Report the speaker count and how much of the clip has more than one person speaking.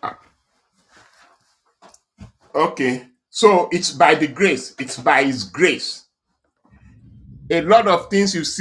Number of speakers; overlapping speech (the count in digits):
1, no overlap